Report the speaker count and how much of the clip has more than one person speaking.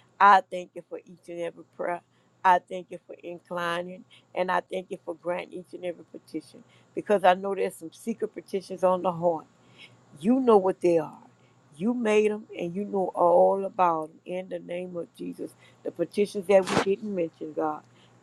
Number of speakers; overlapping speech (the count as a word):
one, no overlap